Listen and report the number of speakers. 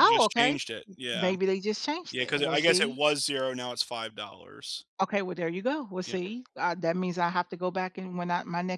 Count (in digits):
2